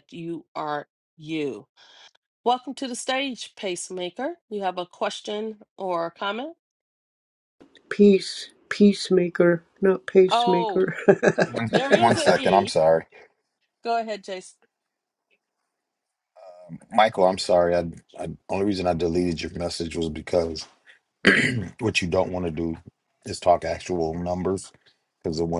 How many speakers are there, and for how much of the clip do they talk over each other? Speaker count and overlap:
3, about 6%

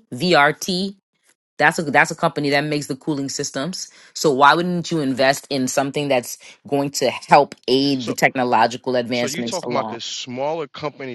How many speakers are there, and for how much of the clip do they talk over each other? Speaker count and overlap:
2, about 9%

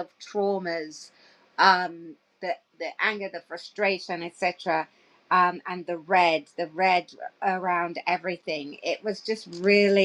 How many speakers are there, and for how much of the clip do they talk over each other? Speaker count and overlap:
1, no overlap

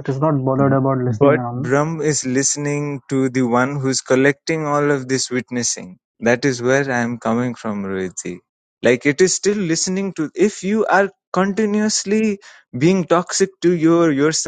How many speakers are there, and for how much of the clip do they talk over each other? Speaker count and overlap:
2, about 4%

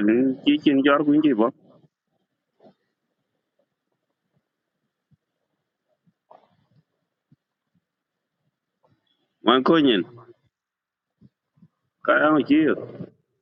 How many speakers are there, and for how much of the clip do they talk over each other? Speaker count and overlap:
1, no overlap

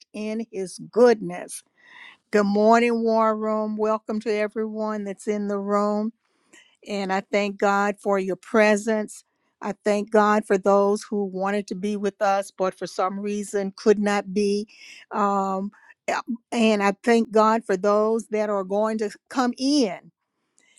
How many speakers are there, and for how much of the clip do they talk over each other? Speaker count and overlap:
1, no overlap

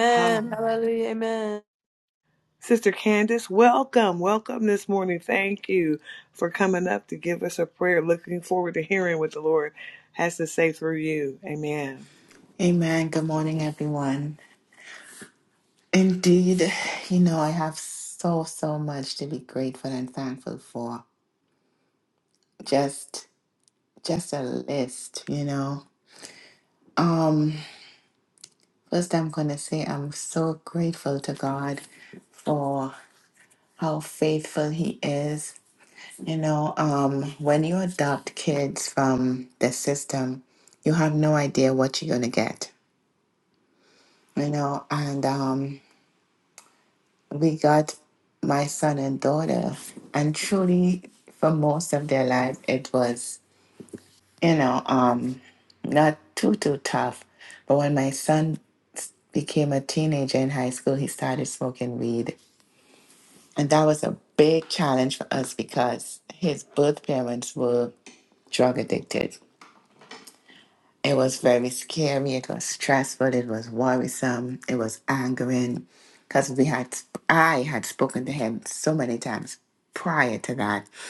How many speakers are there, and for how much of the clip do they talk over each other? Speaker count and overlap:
3, under 1%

